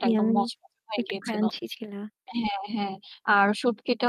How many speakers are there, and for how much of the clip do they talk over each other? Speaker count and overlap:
2, about 23%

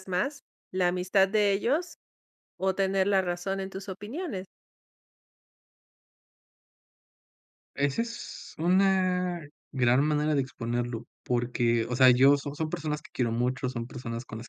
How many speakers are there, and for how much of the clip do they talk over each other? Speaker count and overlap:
2, no overlap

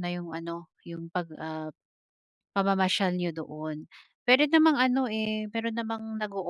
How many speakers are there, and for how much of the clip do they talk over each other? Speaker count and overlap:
1, no overlap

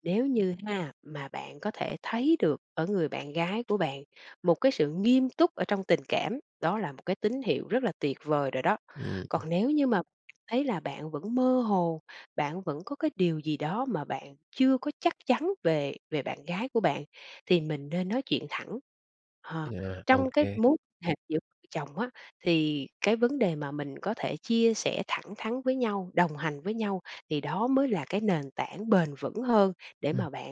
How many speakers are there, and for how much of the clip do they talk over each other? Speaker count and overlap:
2, about 3%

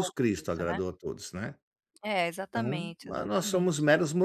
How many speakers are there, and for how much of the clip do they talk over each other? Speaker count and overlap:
2, about 46%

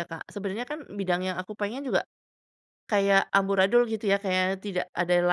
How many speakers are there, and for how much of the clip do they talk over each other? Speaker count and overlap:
1, no overlap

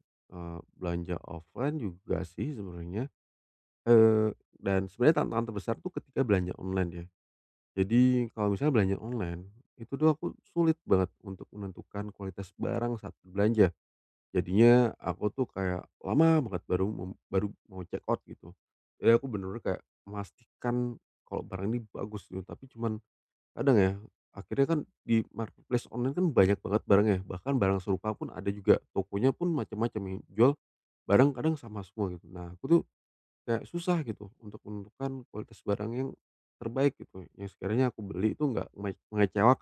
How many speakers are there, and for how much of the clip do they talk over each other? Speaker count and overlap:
1, no overlap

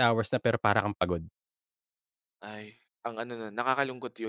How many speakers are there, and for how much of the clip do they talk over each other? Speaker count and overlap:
2, no overlap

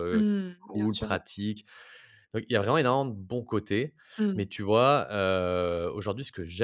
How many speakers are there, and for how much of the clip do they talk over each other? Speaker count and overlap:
2, about 10%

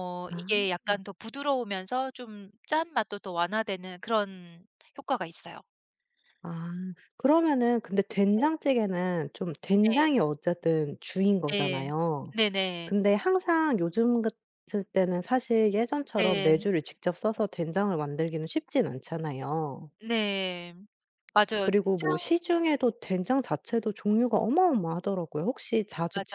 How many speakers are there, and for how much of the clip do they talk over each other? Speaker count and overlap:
2, about 9%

